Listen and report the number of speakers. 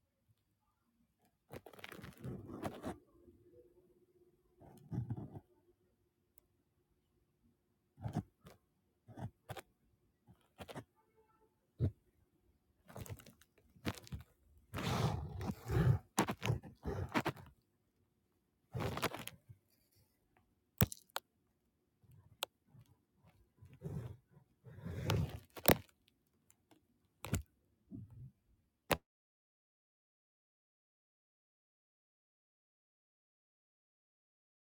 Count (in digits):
0